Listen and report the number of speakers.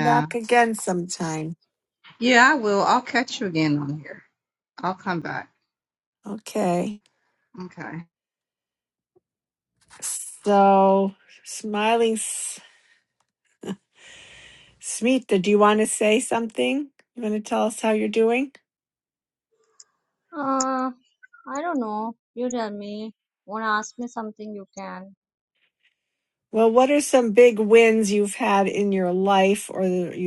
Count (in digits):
3